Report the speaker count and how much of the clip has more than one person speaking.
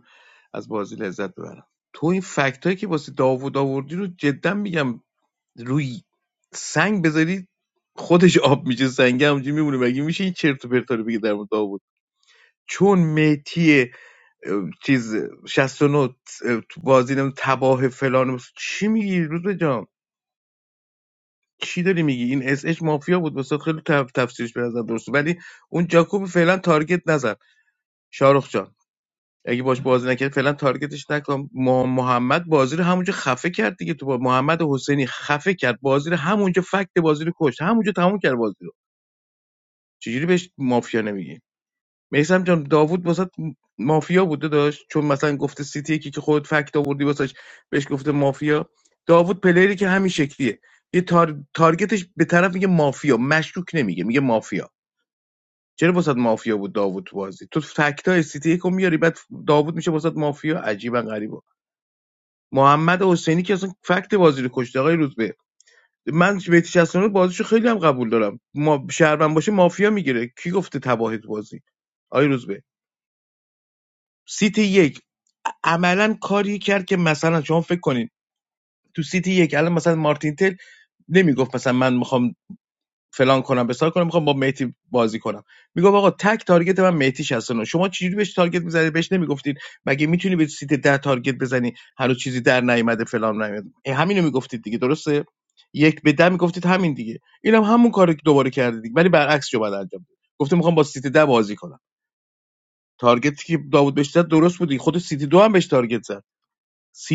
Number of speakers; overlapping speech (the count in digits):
1, no overlap